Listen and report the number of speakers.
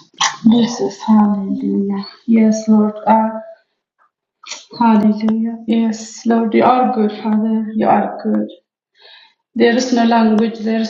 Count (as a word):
one